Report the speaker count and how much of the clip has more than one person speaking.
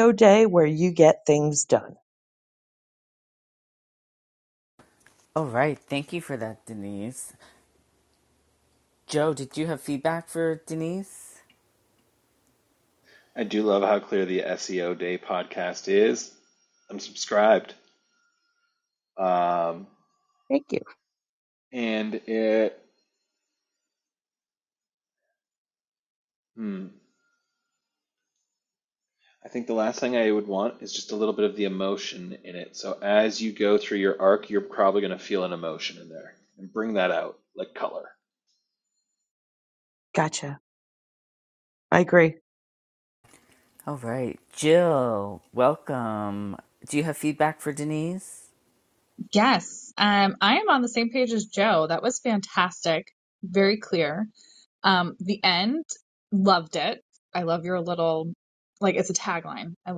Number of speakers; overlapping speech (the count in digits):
4, no overlap